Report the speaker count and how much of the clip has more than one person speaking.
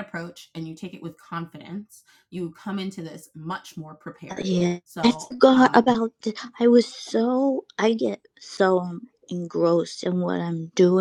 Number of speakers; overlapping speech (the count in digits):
2, about 10%